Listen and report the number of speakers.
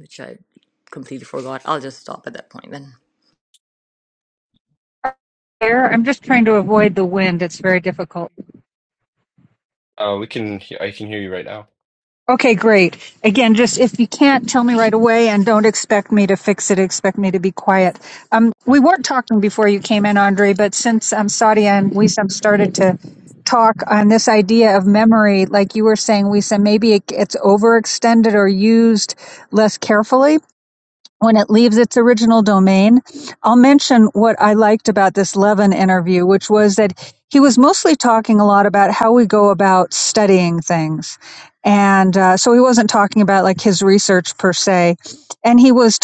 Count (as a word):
three